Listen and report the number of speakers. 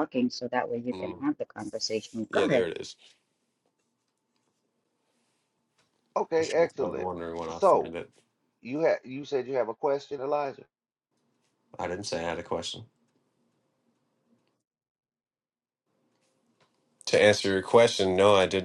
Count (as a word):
three